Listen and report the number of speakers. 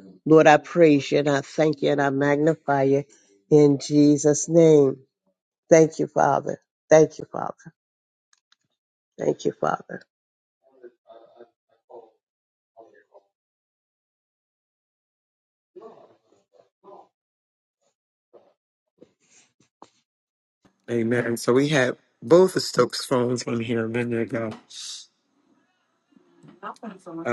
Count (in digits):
2